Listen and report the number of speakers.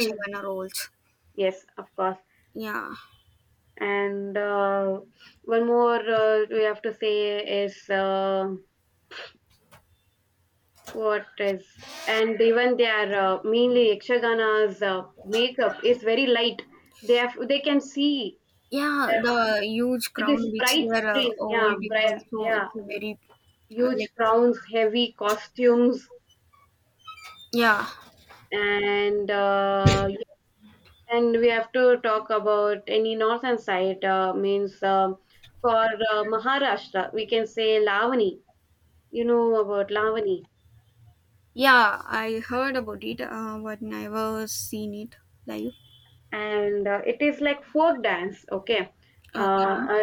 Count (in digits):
2